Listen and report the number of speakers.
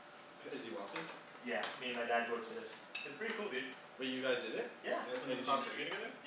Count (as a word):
three